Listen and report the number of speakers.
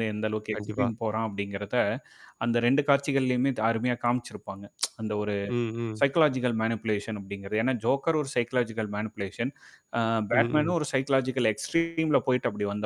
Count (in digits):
2